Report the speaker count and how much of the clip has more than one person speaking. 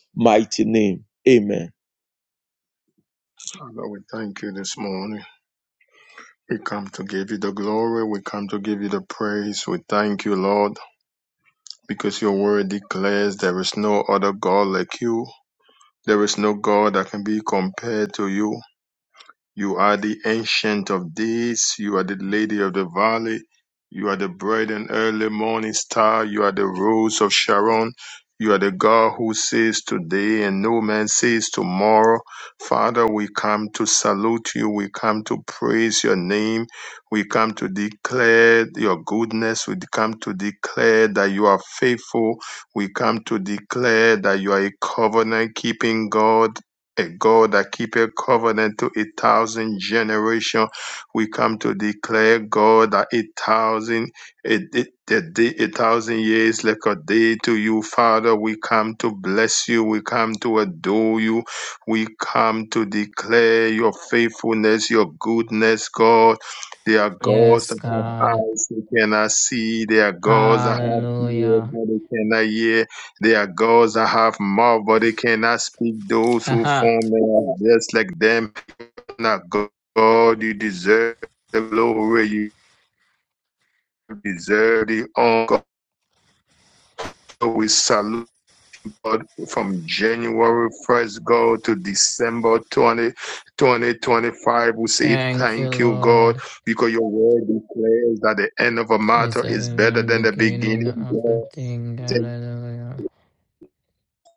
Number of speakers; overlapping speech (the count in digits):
3, about 6%